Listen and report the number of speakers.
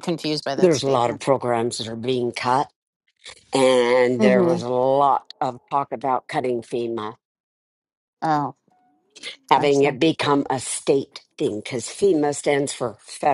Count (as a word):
two